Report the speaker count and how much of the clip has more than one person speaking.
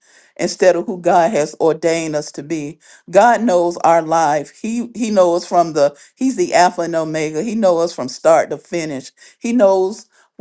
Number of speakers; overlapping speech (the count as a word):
one, no overlap